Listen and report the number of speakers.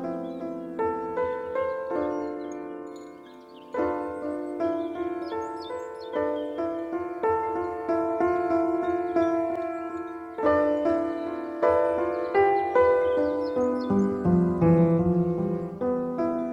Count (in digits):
0